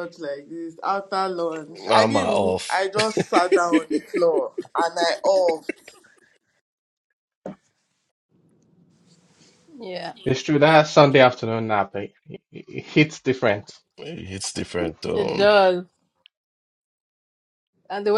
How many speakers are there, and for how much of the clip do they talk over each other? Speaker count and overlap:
four, about 7%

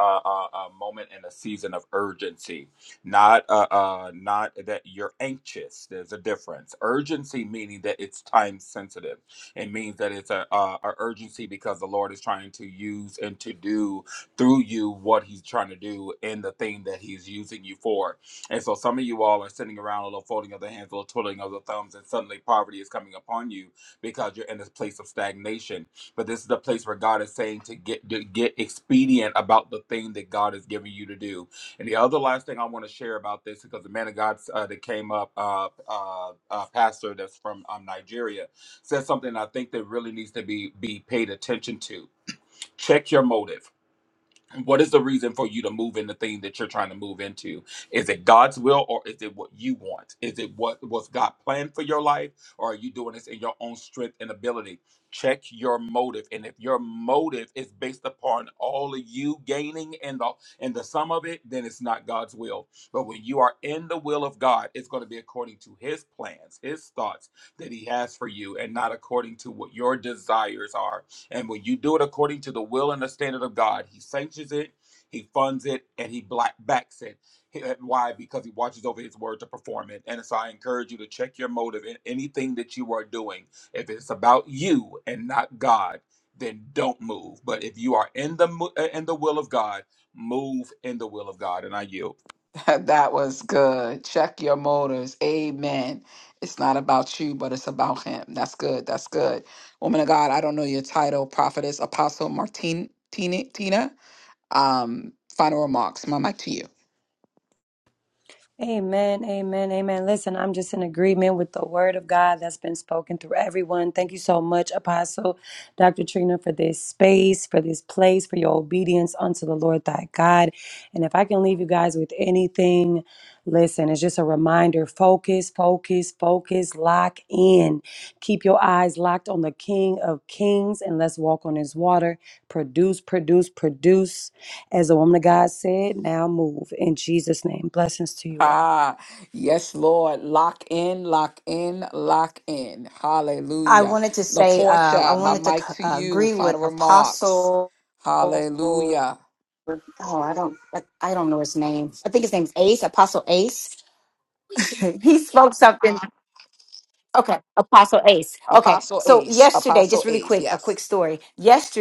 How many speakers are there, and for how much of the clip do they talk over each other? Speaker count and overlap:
four, about 4%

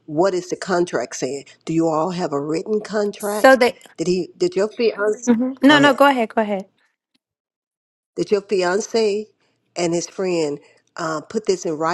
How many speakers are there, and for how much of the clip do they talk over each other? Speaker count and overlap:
two, about 8%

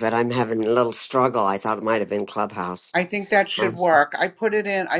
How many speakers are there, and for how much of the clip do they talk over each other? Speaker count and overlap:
two, about 3%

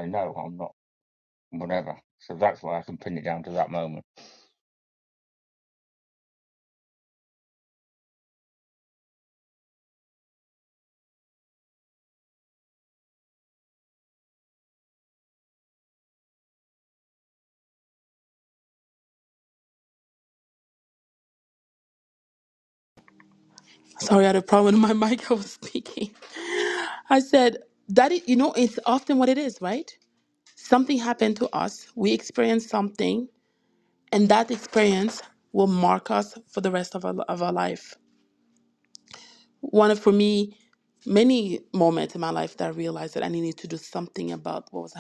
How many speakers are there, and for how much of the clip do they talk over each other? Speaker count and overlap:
two, no overlap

